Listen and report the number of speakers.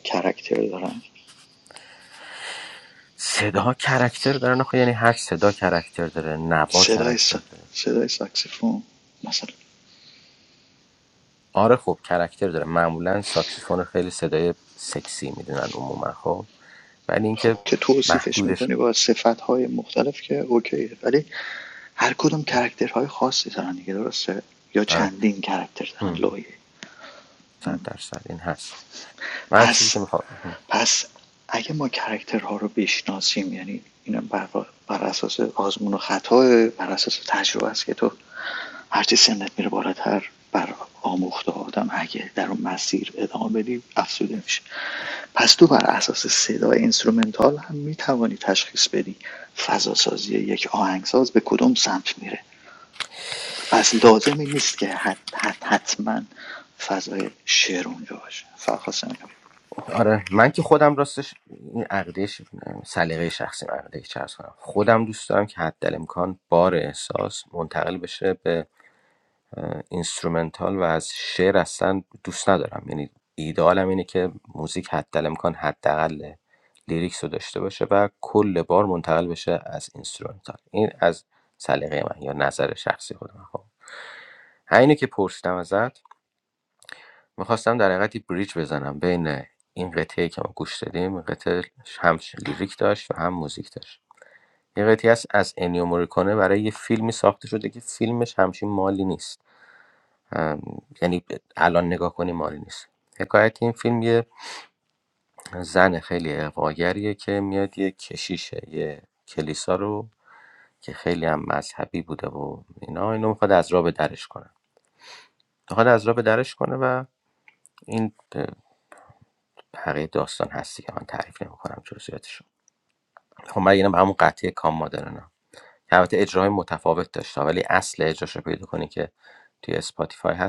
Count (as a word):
two